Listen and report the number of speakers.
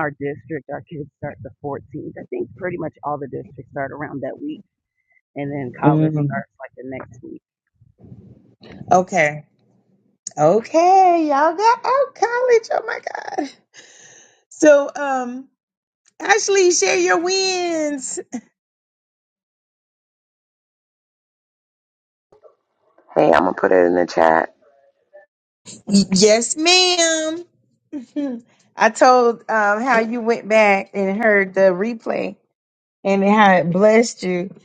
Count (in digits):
3